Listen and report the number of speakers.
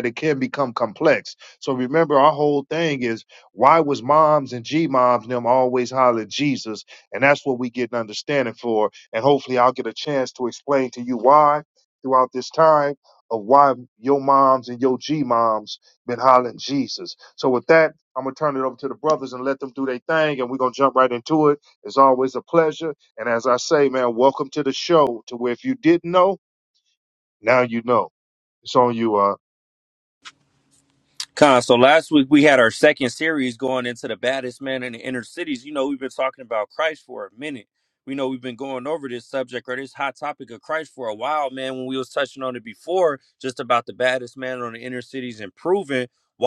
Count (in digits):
2